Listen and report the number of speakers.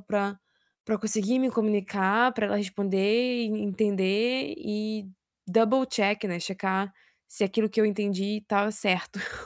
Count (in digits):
1